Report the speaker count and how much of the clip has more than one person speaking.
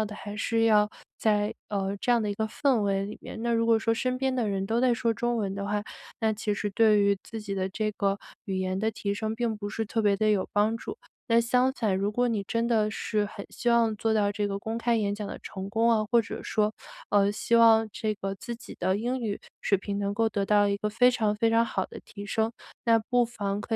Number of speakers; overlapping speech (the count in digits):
1, no overlap